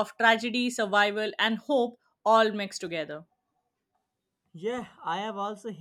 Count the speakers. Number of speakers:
two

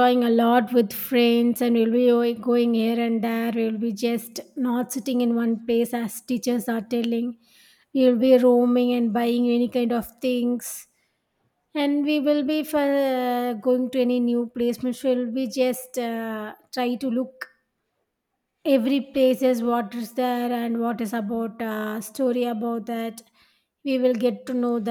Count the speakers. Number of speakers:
one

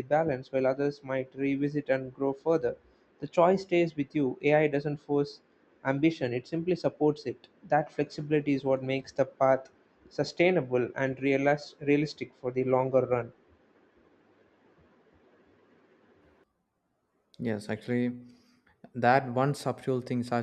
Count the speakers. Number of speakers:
two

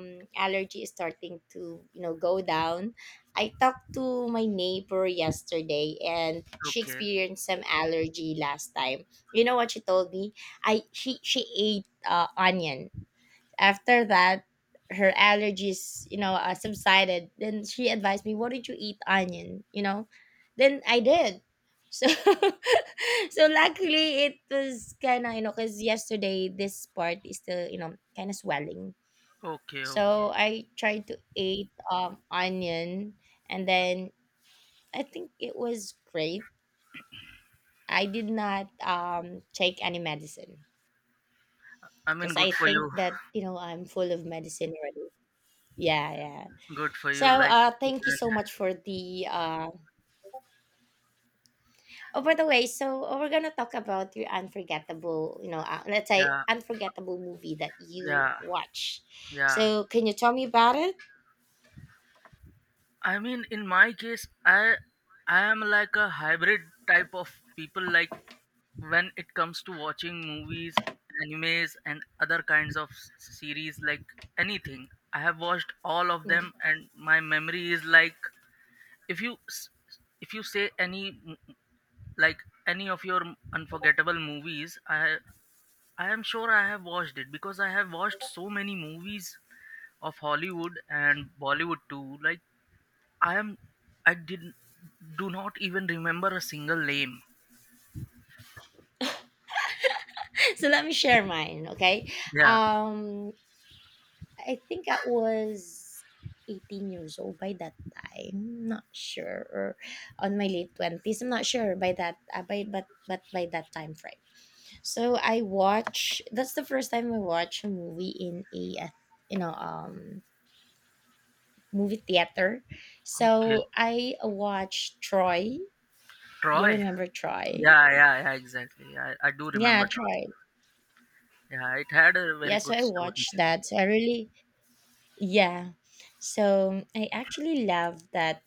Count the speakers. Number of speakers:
two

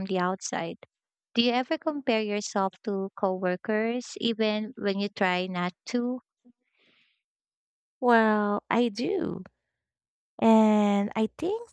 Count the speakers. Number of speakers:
two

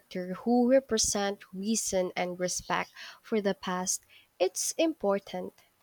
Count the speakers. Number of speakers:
one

